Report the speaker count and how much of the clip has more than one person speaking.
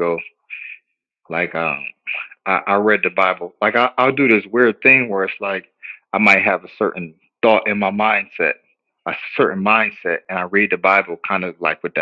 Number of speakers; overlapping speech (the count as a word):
one, no overlap